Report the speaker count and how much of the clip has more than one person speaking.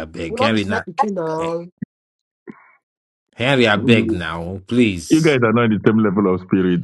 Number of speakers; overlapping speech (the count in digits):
3, about 14%